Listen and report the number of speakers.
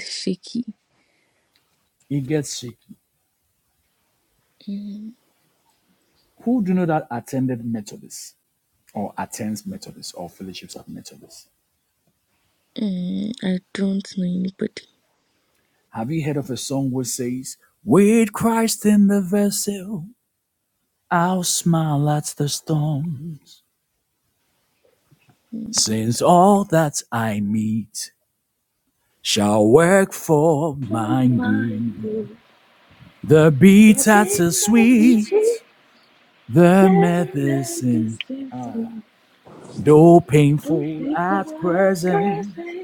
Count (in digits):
3